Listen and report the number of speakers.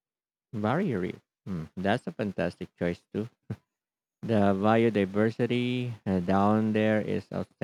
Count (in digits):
1